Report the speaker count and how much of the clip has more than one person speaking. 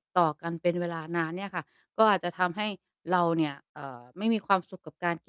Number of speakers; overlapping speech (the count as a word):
one, no overlap